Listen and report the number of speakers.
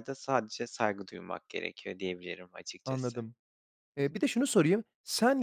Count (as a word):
two